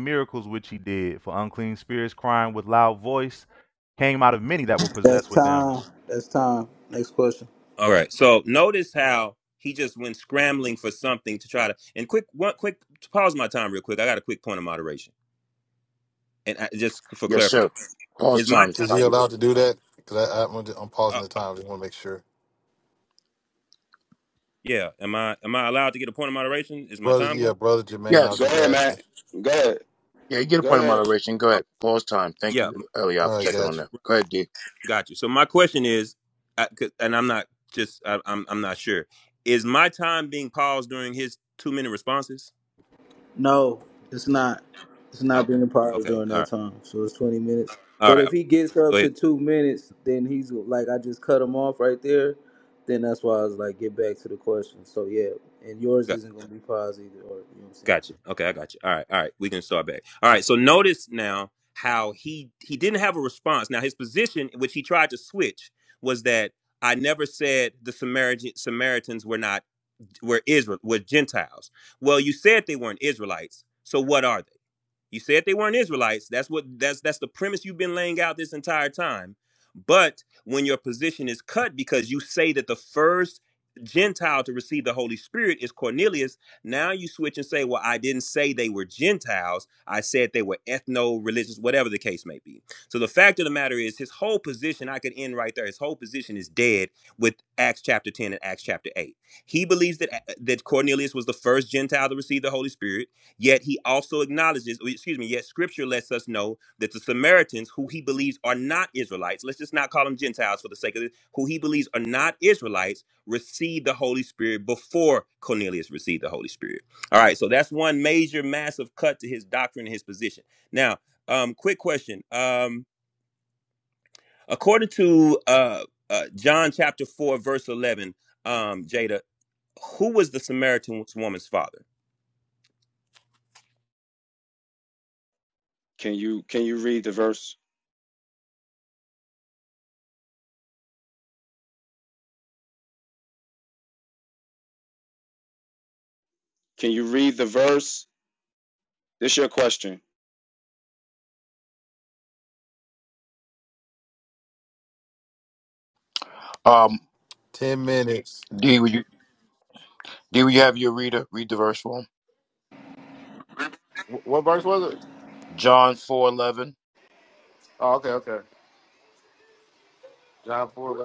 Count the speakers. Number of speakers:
7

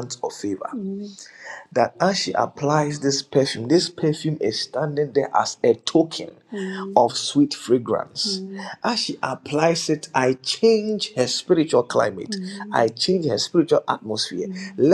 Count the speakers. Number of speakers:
2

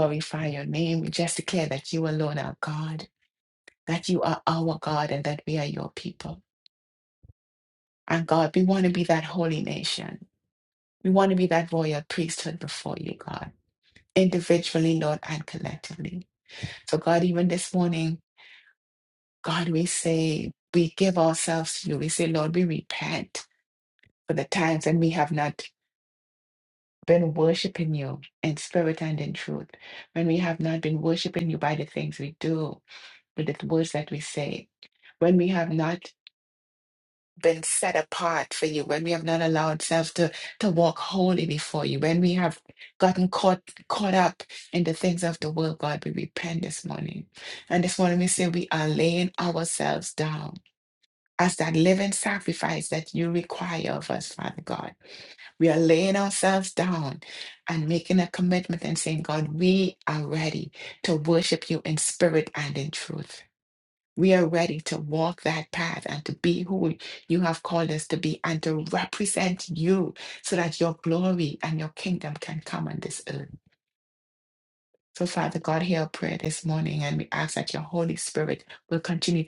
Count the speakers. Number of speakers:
1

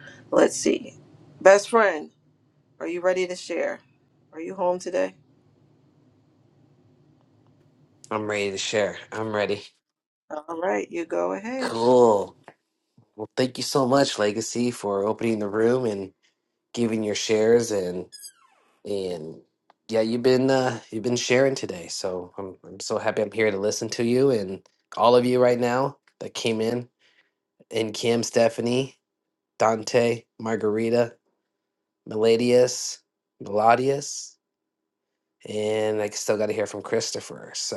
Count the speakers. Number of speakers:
2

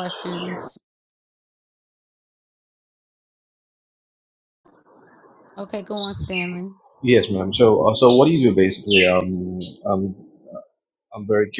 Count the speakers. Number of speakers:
2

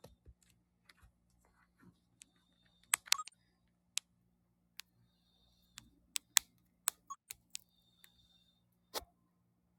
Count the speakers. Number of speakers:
0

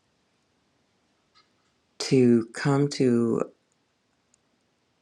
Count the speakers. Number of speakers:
1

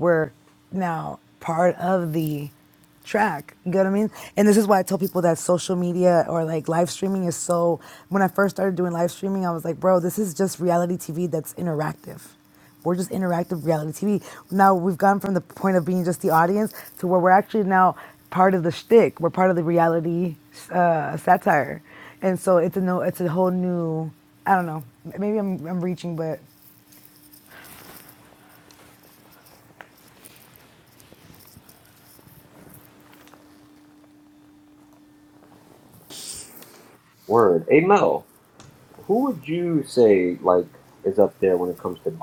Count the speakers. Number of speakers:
2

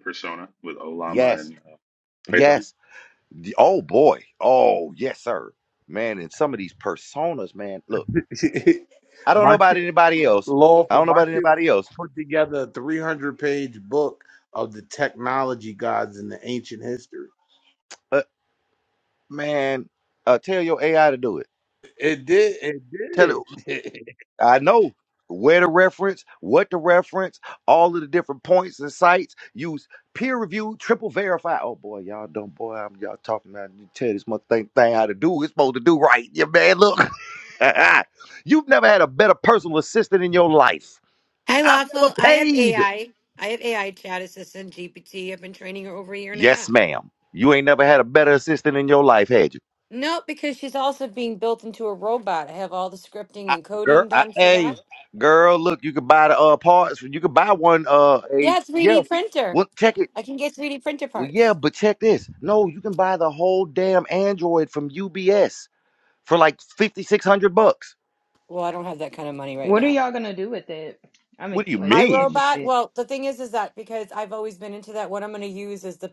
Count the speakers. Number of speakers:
5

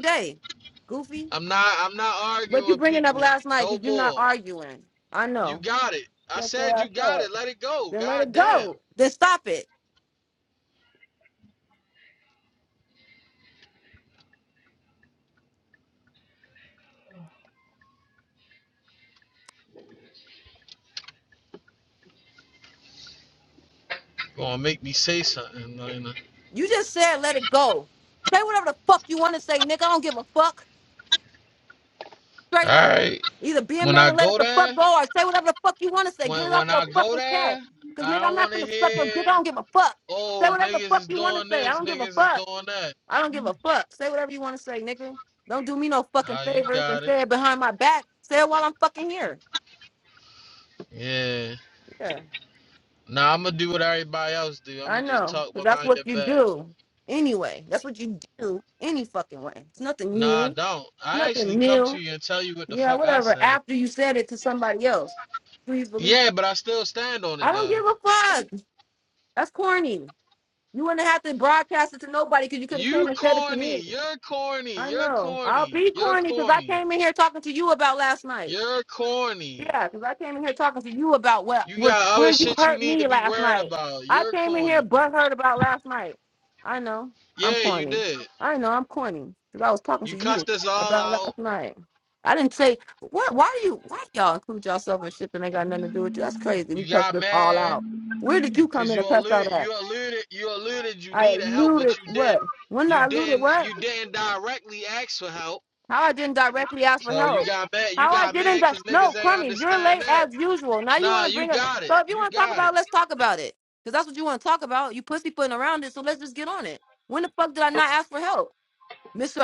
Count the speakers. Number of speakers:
2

